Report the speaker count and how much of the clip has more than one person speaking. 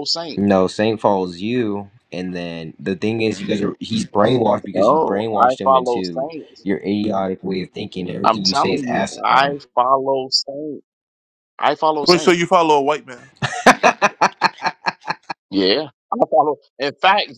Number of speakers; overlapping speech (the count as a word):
three, about 19%